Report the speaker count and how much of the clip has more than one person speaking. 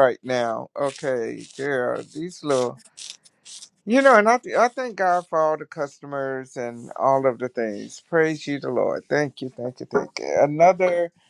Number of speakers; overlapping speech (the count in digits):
1, no overlap